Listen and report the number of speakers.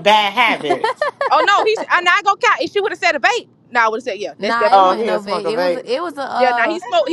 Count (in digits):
3